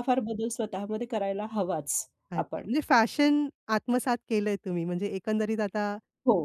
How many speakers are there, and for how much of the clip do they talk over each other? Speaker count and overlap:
2, about 4%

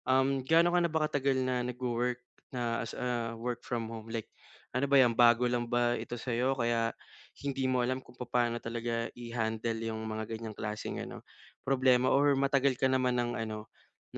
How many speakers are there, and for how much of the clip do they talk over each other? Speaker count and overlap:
1, no overlap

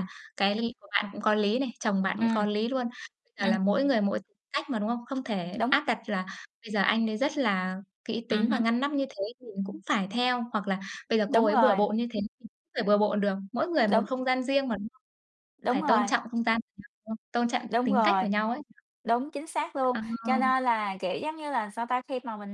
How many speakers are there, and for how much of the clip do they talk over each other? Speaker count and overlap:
2, about 13%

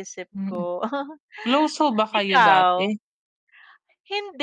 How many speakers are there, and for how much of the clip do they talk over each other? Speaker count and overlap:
2, about 23%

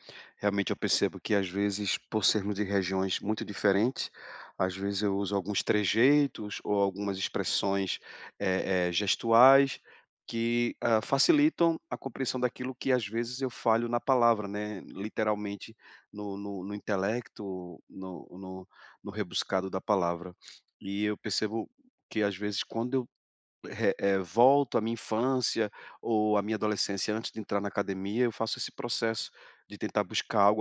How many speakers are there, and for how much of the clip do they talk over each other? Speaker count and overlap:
1, no overlap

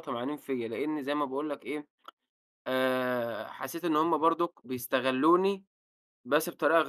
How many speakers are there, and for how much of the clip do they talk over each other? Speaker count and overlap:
1, no overlap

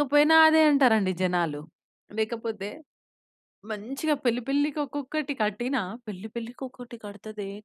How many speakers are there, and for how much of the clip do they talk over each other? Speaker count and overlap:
1, no overlap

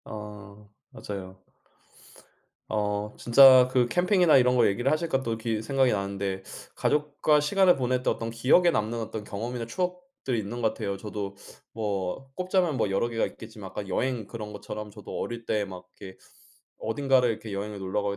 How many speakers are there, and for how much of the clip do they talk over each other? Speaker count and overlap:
1, no overlap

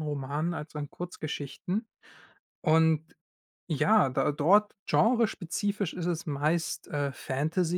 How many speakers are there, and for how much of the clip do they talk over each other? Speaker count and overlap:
1, no overlap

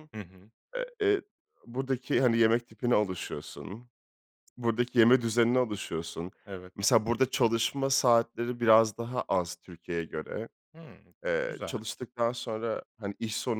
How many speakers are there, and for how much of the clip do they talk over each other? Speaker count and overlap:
2, about 3%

